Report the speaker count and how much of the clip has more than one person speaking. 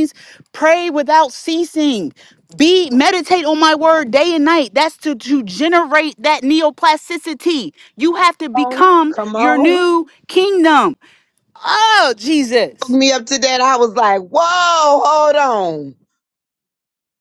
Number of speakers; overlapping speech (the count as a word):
two, about 8%